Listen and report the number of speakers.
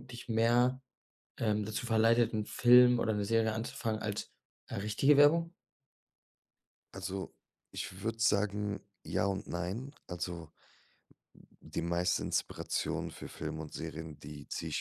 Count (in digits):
2